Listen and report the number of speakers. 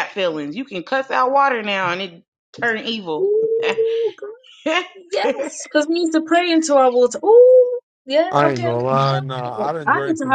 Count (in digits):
3